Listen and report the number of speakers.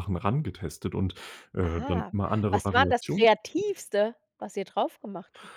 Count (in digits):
2